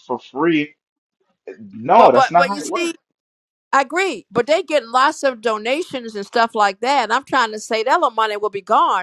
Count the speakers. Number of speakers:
2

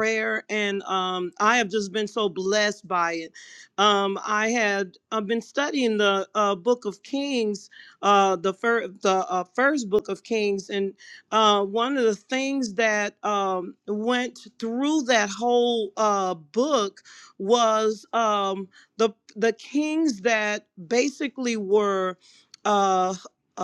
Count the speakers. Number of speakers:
1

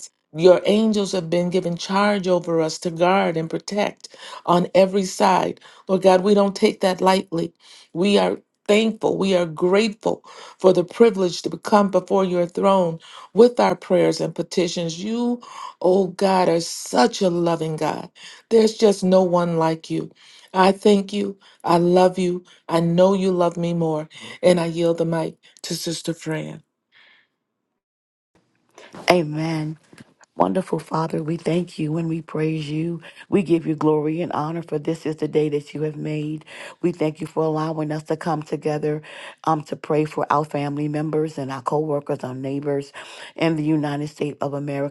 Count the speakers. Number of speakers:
2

